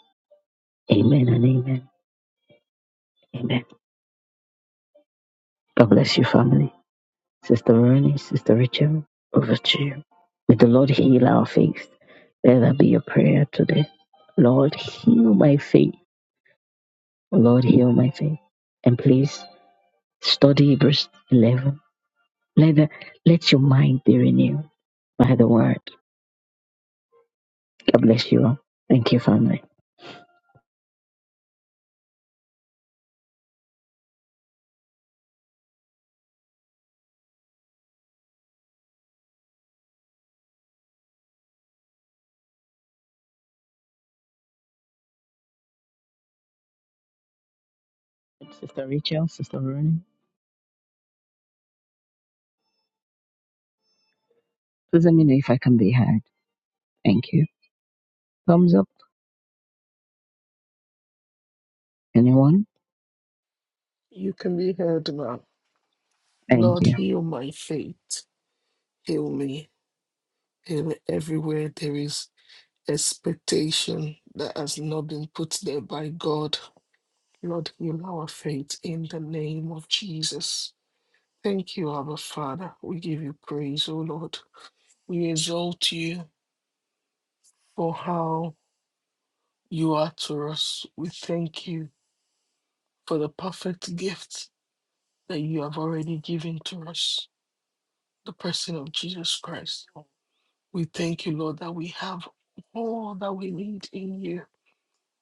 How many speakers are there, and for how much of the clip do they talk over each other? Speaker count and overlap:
two, under 1%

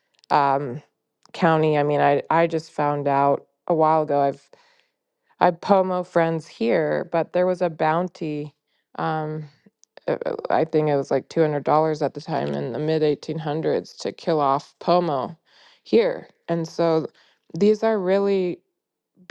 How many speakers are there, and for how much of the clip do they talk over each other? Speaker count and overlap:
one, no overlap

